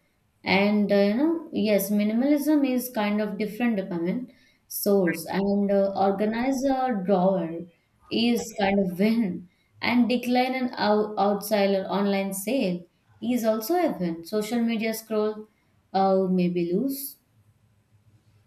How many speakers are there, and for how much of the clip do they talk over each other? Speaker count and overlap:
one, no overlap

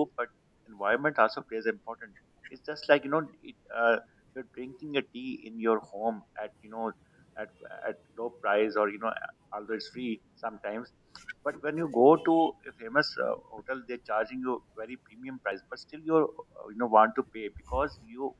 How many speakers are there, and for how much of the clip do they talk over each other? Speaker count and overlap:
one, no overlap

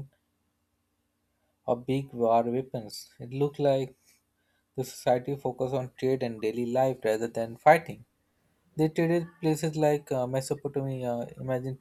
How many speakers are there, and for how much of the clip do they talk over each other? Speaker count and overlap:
one, no overlap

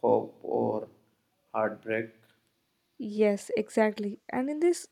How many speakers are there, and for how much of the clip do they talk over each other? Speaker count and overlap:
two, no overlap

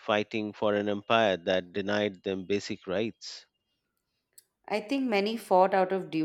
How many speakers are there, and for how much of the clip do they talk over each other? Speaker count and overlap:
two, no overlap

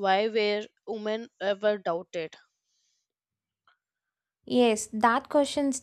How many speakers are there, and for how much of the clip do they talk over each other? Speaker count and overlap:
two, no overlap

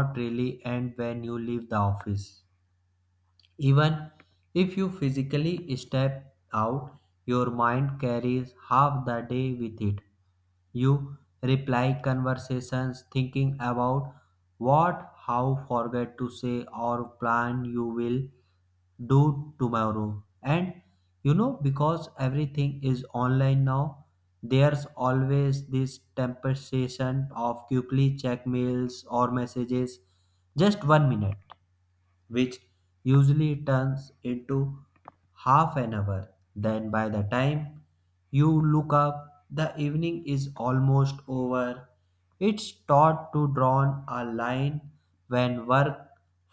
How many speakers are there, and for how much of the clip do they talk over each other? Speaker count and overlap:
one, no overlap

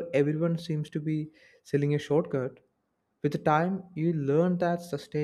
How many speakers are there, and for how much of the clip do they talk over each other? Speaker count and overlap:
one, no overlap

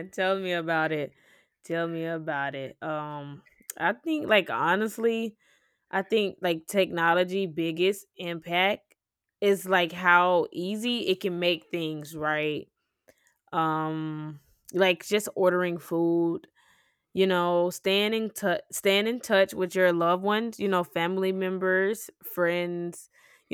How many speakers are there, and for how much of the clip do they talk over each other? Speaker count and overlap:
one, no overlap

